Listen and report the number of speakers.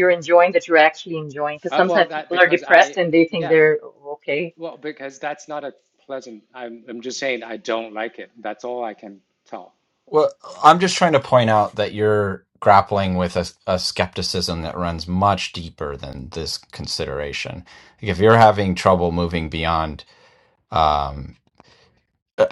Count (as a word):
three